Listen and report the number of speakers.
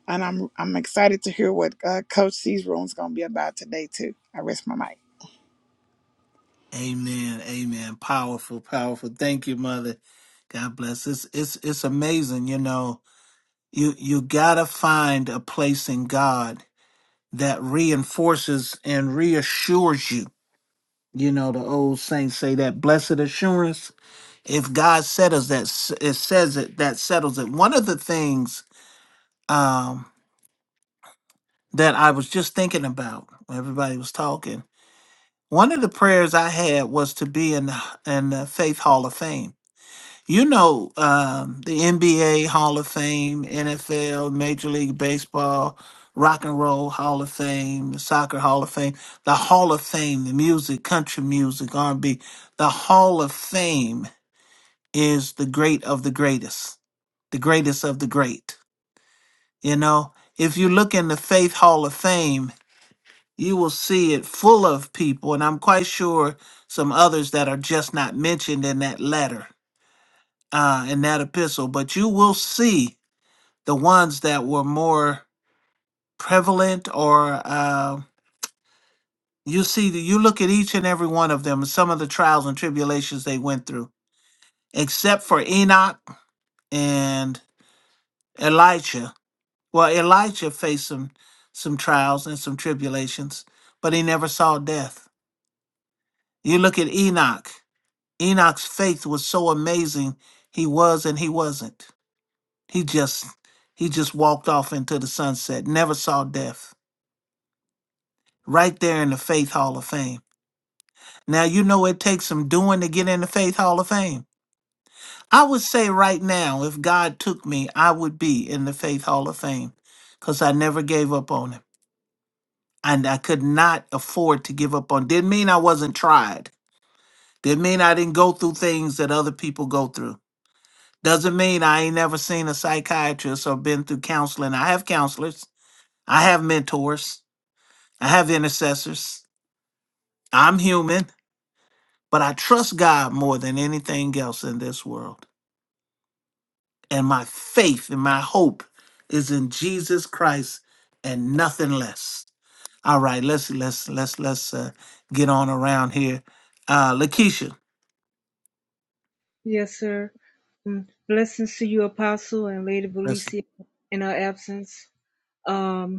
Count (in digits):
3